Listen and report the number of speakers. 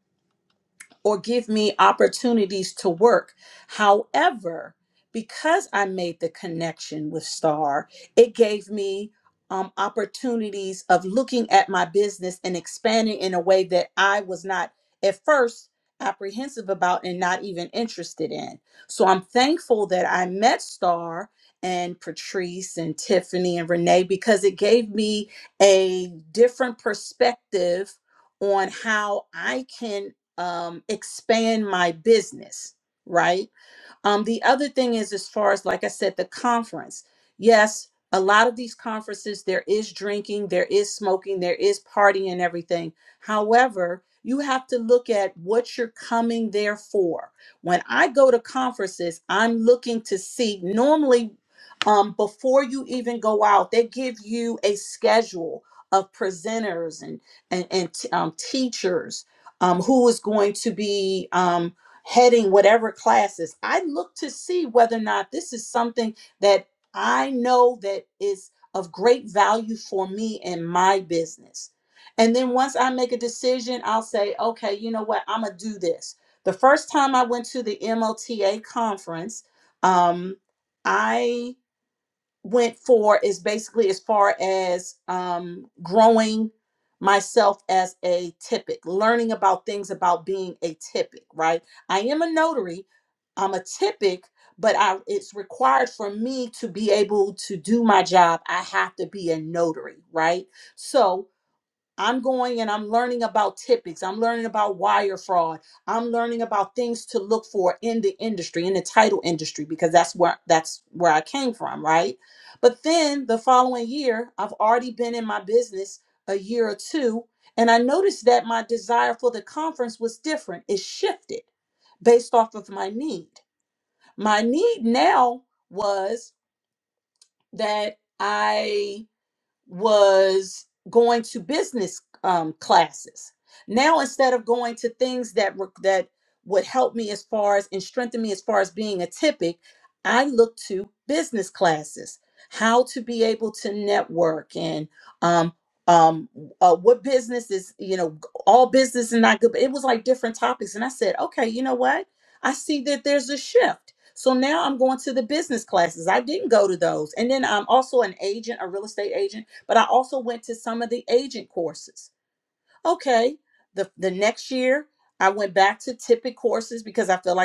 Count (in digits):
1